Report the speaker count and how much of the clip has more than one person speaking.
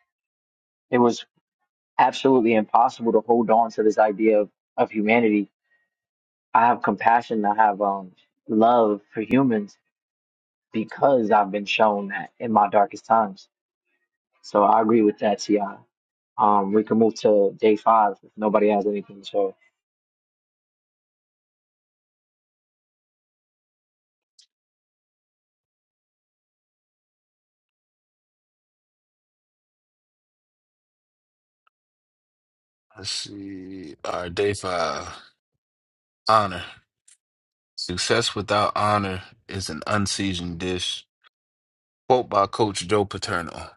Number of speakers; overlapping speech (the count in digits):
2, no overlap